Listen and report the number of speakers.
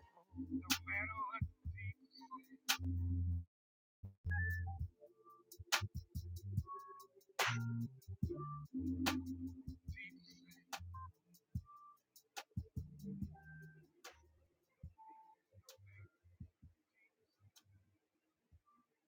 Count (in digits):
0